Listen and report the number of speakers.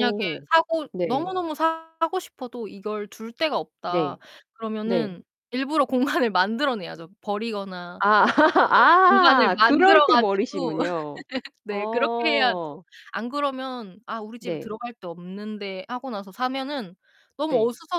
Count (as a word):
two